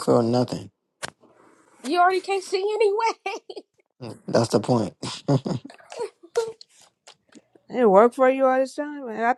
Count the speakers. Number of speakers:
3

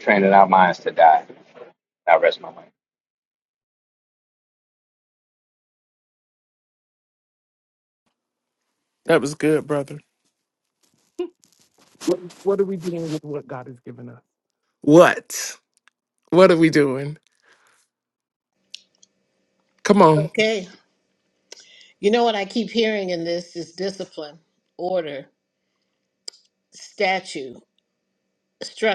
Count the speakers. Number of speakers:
3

